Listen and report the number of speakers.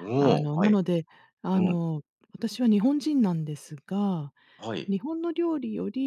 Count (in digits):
2